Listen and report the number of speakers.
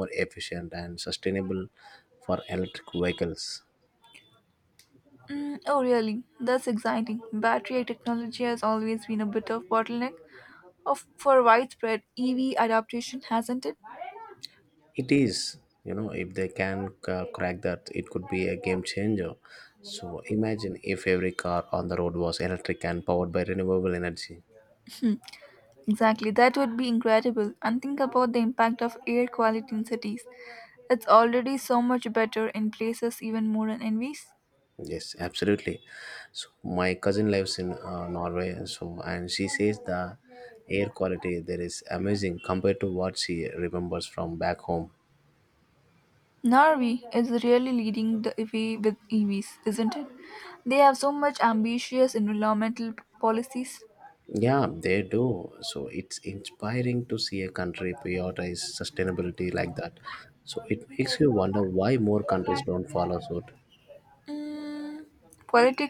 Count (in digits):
2